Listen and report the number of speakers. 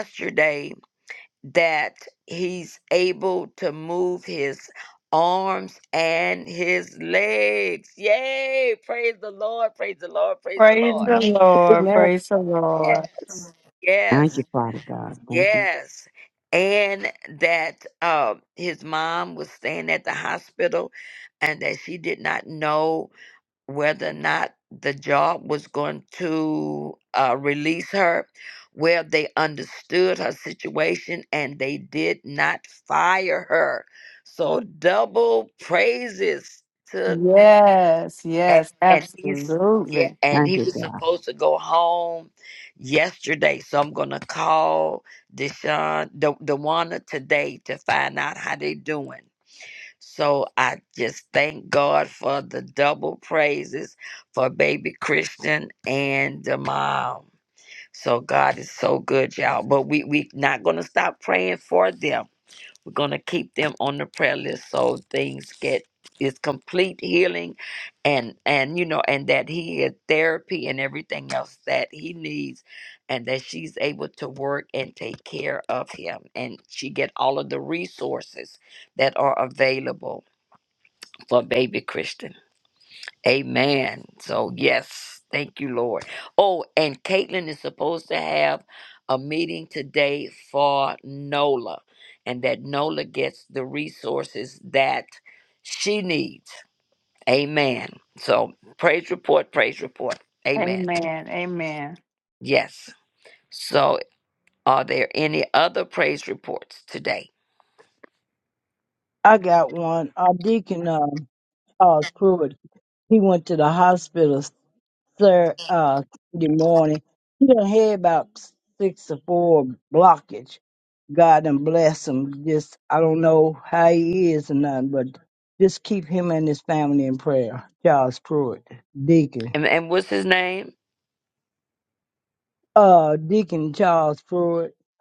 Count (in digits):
4